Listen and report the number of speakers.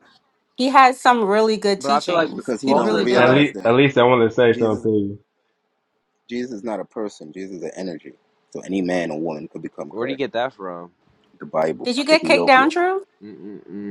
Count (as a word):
four